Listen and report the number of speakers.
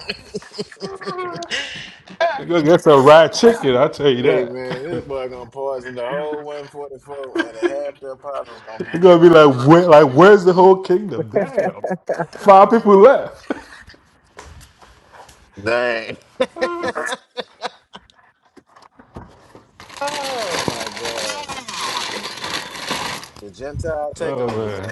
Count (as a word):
two